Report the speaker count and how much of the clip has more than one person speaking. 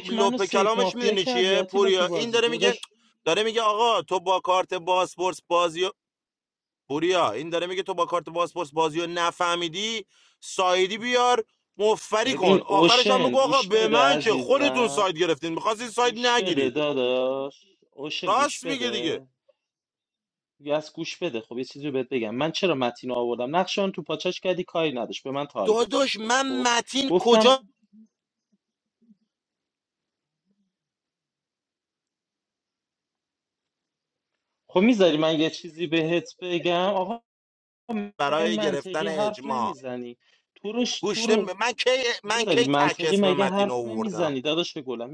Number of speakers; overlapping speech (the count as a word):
two, about 28%